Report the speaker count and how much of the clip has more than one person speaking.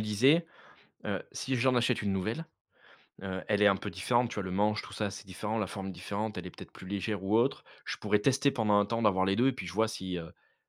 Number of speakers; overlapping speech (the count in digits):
1, no overlap